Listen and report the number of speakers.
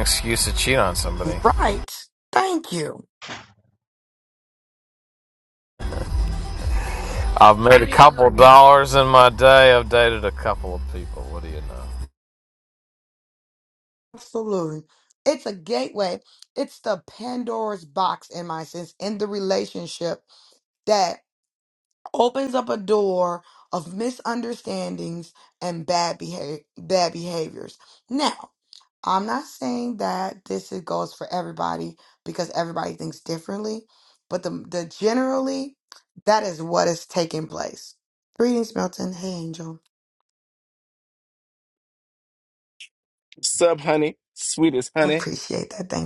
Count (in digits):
3